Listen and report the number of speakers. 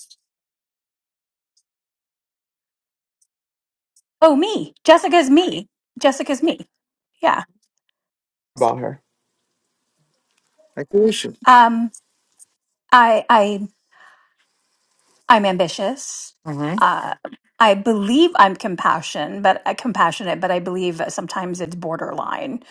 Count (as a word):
two